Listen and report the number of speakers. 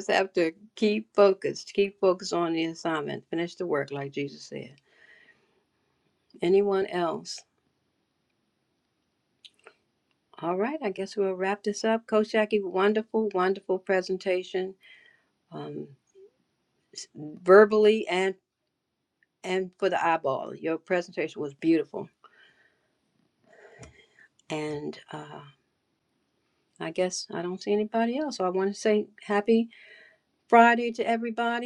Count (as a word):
one